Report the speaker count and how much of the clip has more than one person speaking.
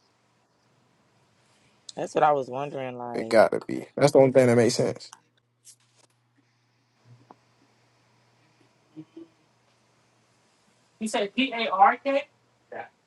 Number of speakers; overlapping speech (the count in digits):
3, about 3%